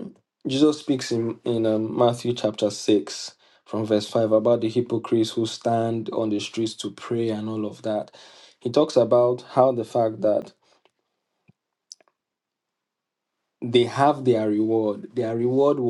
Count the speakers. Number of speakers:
one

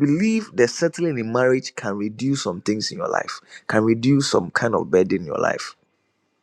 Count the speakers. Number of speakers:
one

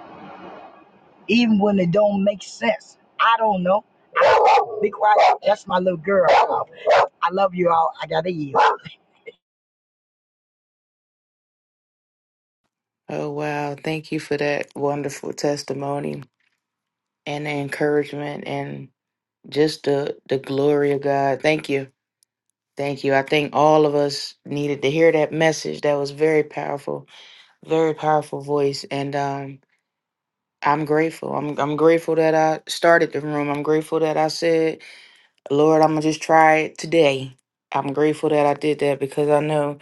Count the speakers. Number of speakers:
two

